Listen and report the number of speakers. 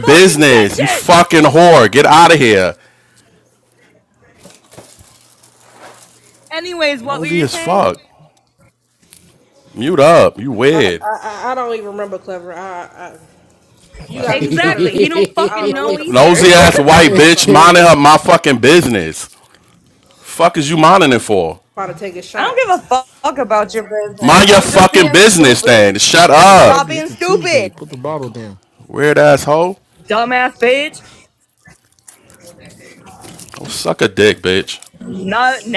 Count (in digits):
4